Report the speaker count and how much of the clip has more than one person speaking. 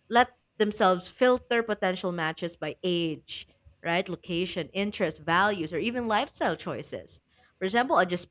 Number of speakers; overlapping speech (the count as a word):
one, no overlap